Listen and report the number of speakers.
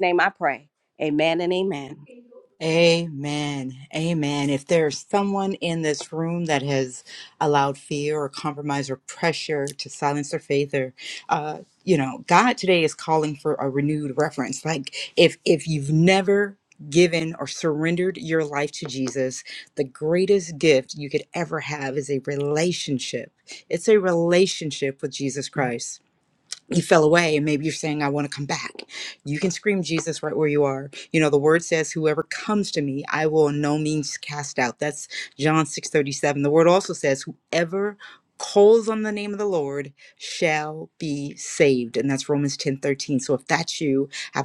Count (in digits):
2